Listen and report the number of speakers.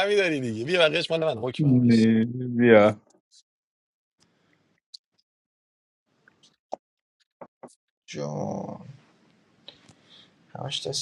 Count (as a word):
three